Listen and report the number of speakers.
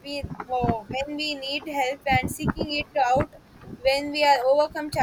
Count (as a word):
one